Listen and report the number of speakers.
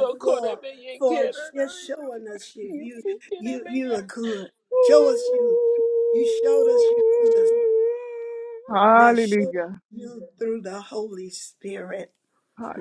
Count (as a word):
three